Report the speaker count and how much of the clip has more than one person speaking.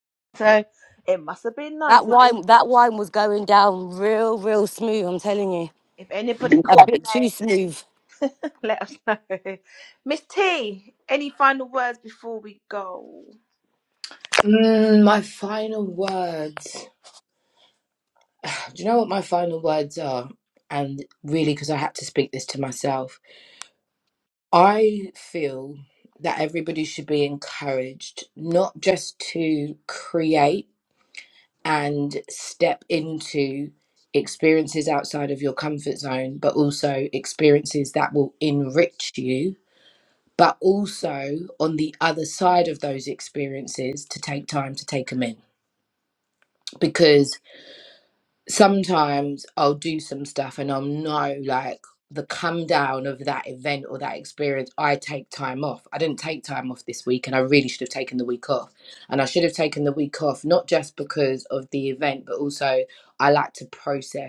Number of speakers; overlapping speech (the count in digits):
3, about 1%